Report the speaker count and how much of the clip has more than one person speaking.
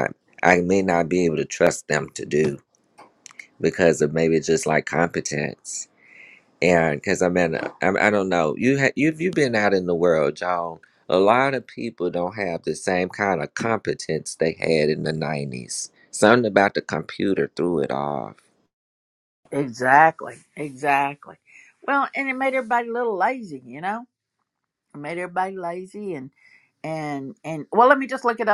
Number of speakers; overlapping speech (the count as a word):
two, no overlap